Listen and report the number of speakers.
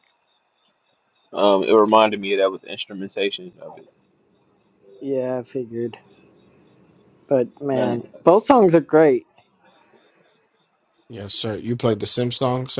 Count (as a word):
three